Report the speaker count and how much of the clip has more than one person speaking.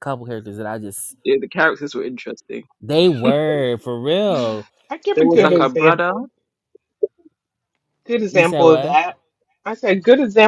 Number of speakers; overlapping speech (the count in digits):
3, about 16%